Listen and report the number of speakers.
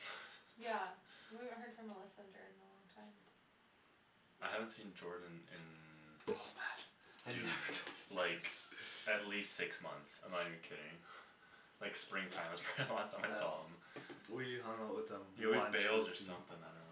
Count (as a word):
three